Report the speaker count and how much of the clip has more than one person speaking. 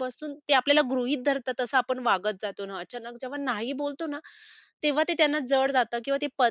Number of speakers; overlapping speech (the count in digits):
1, no overlap